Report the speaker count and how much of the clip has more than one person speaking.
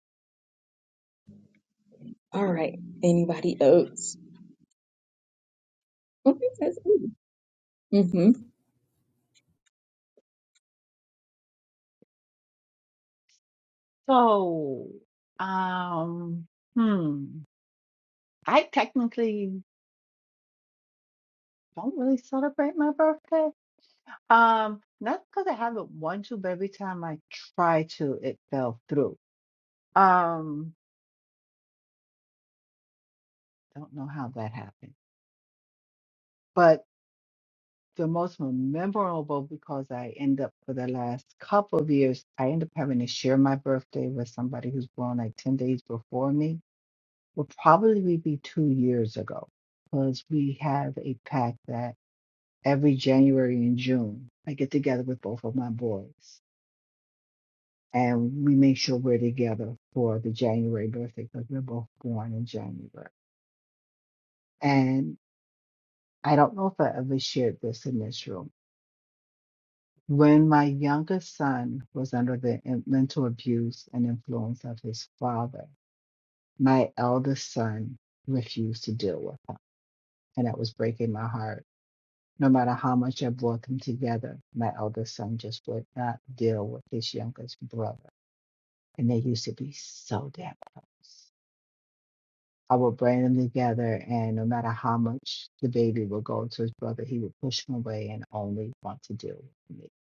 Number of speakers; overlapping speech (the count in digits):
2, no overlap